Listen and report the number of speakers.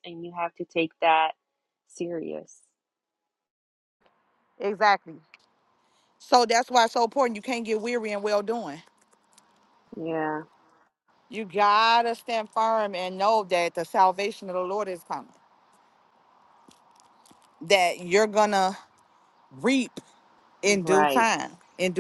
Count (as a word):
two